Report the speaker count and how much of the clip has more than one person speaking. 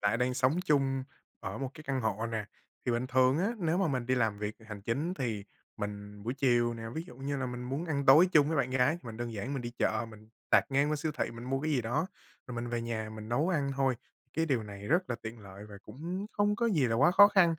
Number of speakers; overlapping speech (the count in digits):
1, no overlap